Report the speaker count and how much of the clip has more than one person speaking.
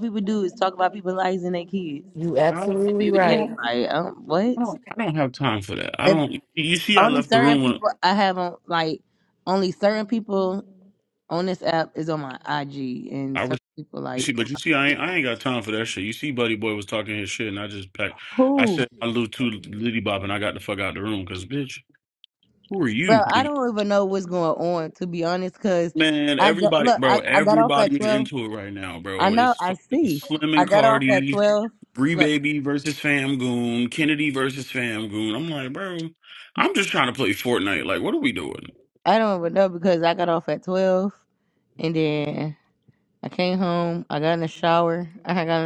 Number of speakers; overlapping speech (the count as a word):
three, about 15%